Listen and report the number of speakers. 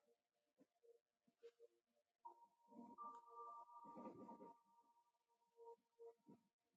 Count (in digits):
0